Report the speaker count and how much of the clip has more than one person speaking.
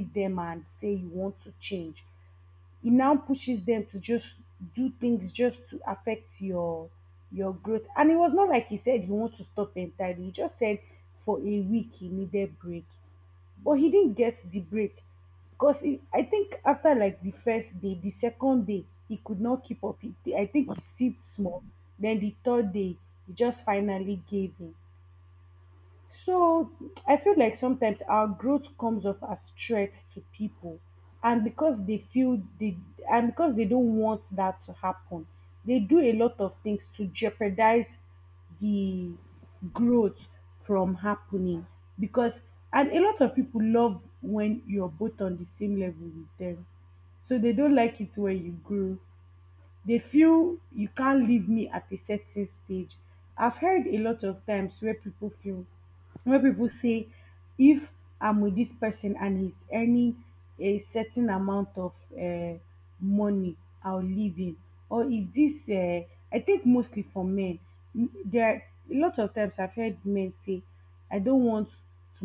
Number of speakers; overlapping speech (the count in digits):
1, no overlap